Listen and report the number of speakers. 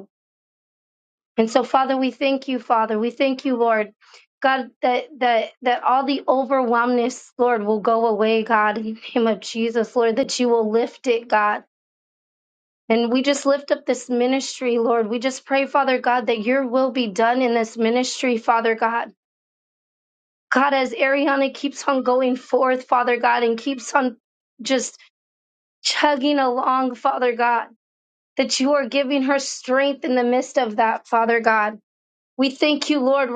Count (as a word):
one